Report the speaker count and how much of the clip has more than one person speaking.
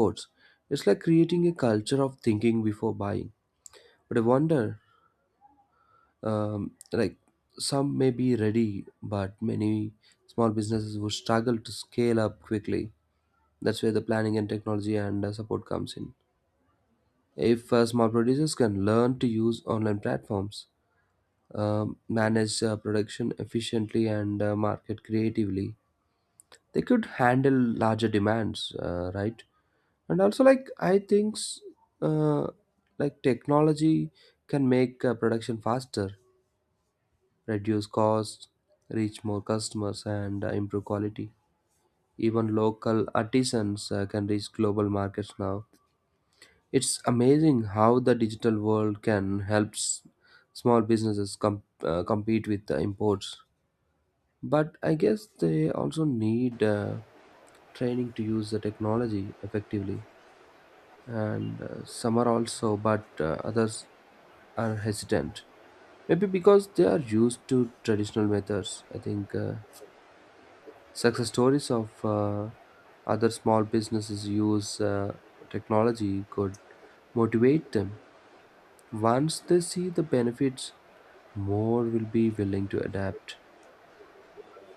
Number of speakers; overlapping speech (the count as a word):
one, no overlap